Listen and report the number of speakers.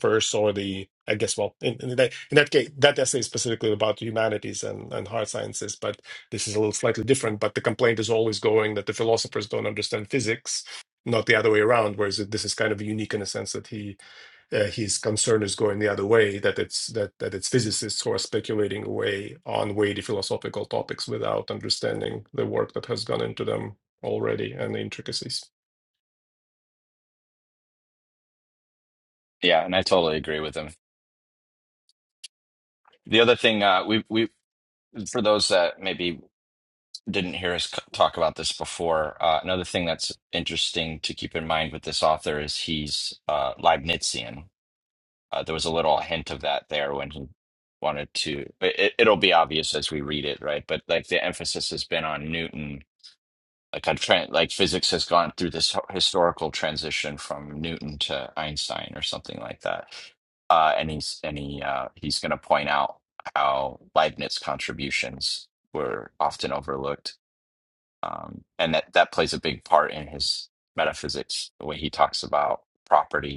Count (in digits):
2